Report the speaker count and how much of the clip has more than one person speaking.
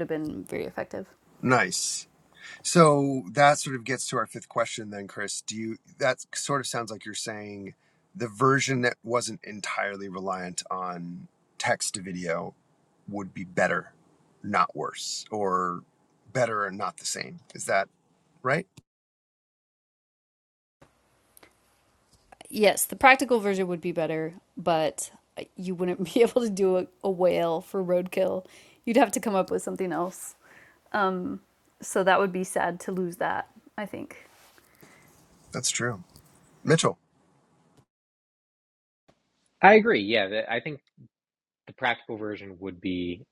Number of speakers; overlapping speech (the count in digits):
3, no overlap